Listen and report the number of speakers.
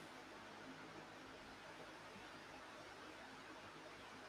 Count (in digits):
0